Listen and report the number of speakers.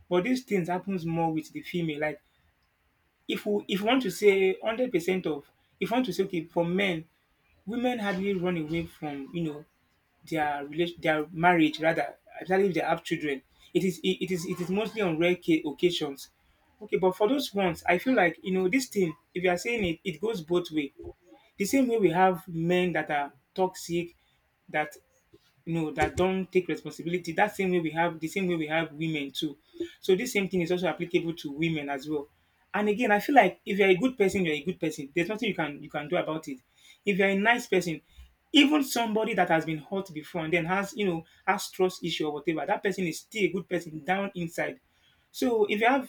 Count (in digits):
1